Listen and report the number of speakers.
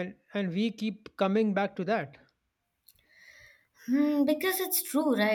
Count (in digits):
2